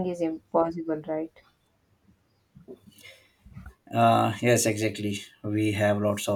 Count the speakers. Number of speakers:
2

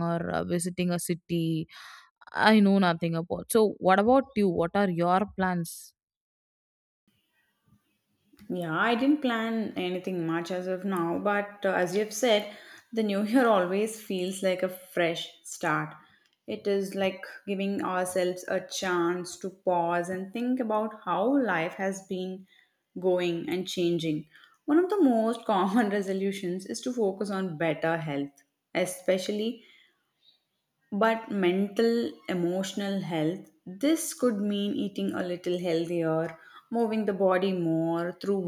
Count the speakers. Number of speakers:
2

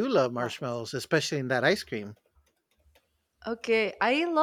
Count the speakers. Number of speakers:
2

